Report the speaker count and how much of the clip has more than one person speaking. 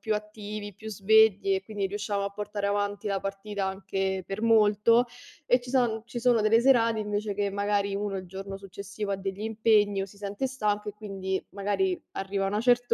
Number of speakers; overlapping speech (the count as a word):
one, no overlap